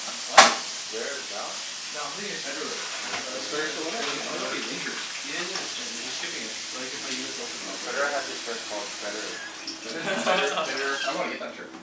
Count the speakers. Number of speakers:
3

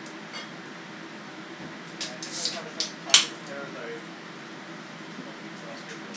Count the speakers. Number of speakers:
1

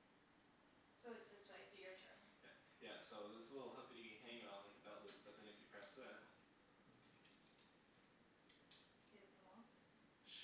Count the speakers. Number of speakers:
2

